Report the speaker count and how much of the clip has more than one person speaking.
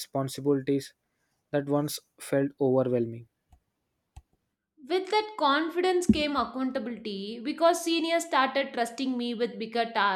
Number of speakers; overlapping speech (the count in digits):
2, no overlap